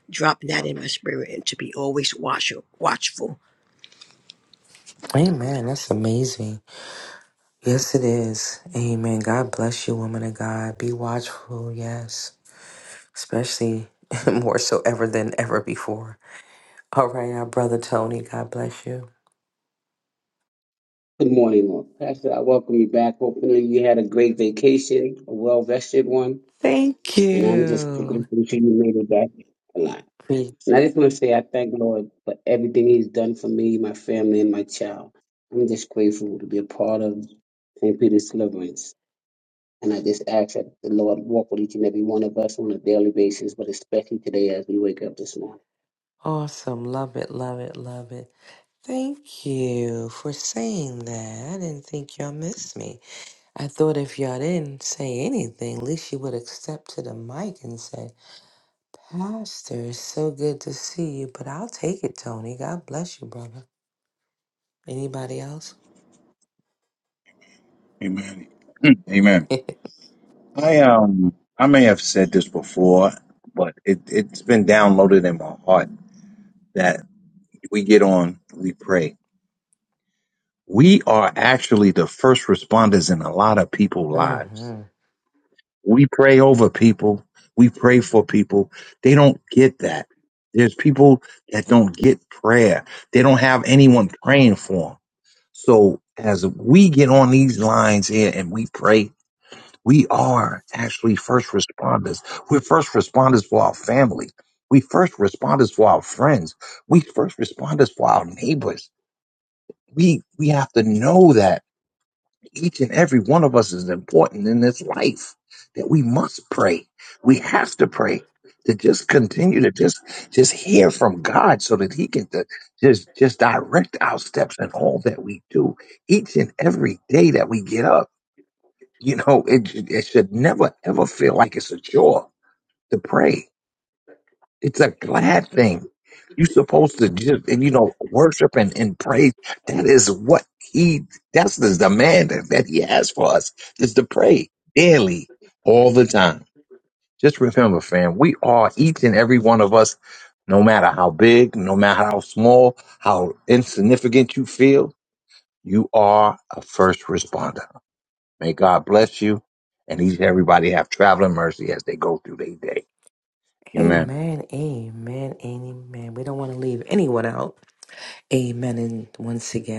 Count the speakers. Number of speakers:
four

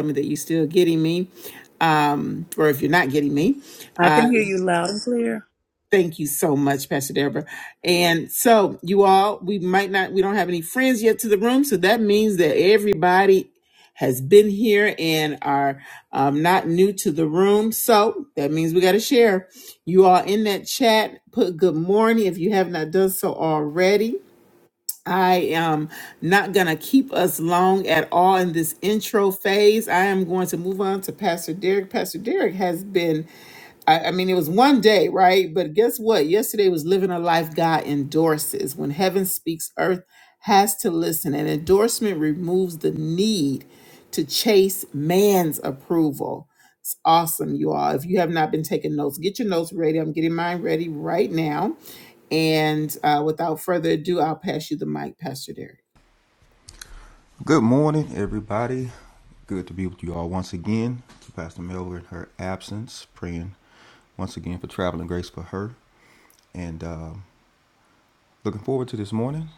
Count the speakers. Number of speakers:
three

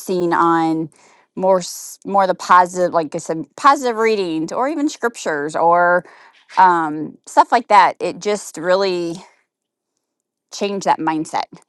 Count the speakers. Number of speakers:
one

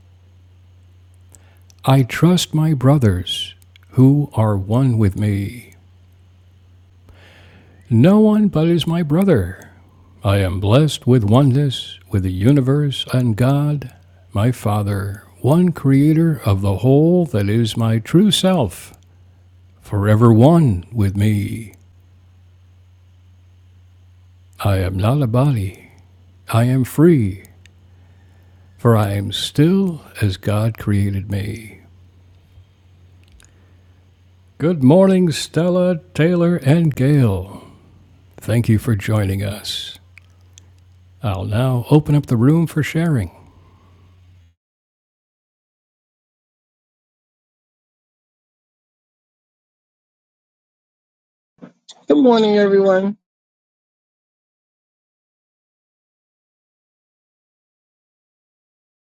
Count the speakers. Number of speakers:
two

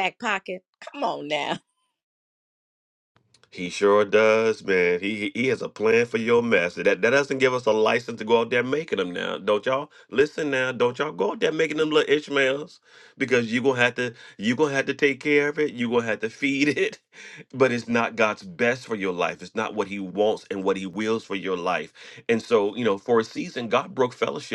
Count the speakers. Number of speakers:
two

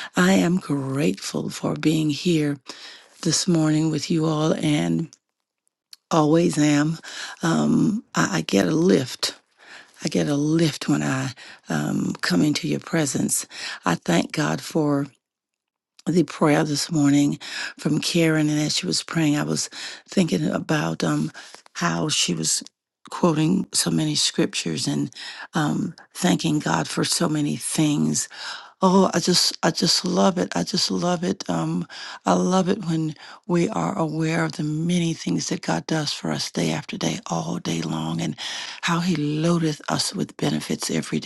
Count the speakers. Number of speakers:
one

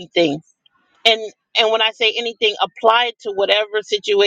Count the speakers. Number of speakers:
one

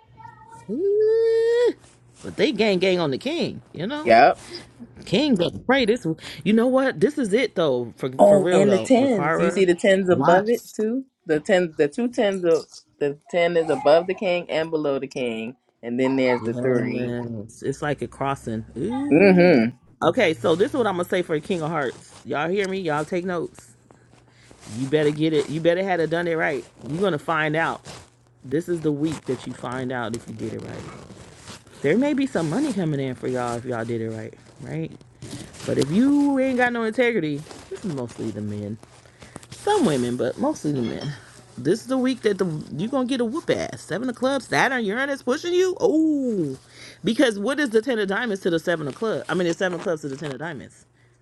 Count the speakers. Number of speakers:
two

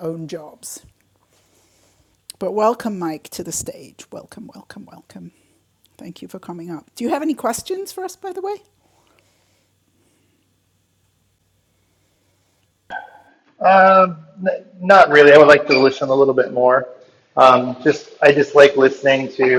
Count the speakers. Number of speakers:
two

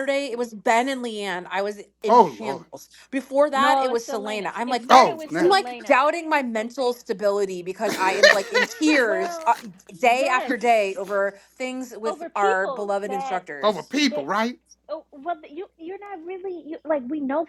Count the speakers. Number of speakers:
three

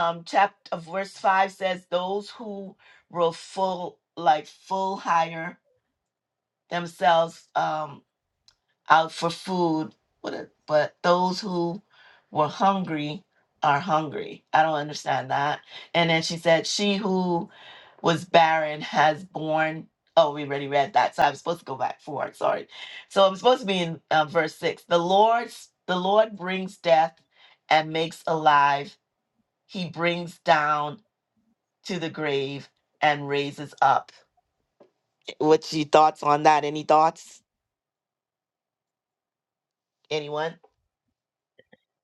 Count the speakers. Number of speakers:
one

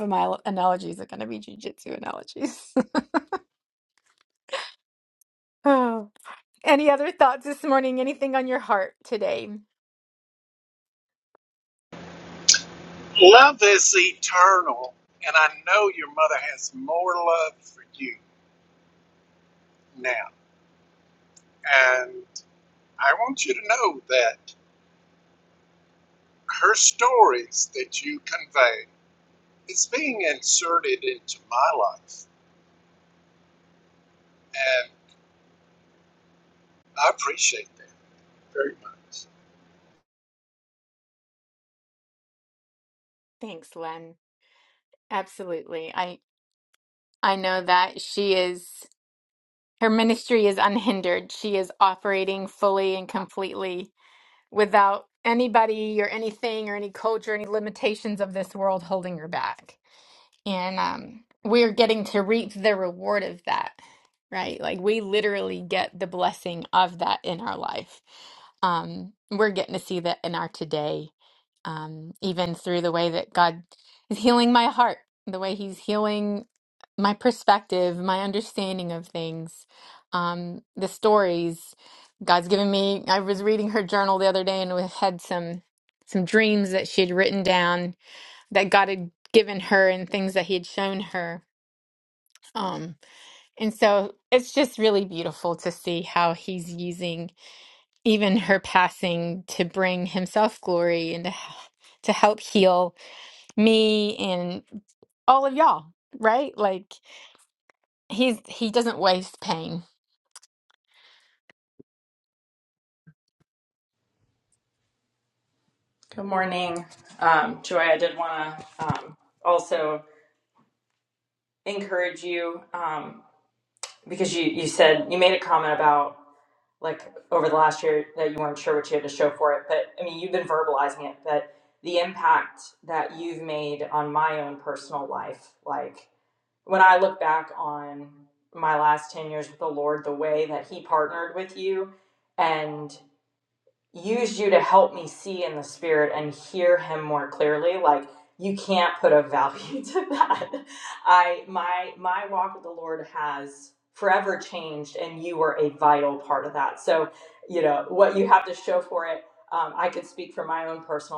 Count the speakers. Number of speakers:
three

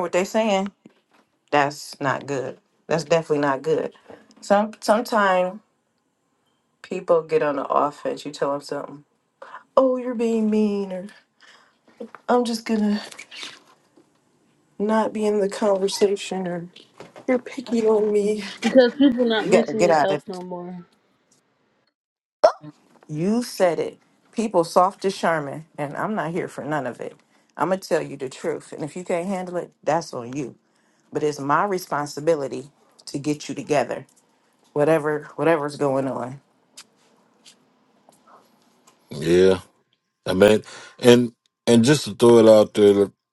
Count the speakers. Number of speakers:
three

